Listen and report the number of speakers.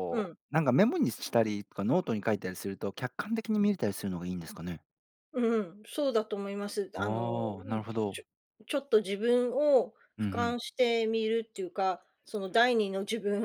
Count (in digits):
2